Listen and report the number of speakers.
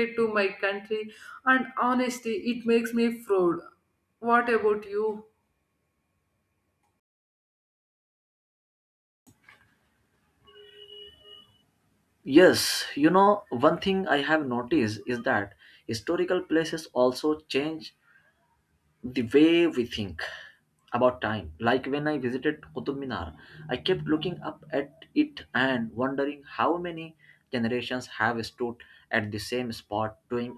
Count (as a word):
two